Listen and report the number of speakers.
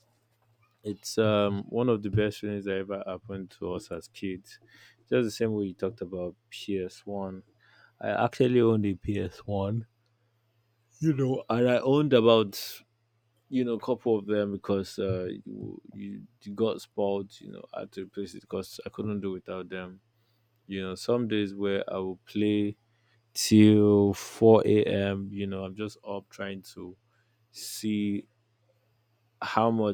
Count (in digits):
1